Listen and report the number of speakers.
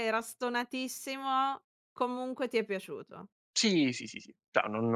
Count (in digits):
2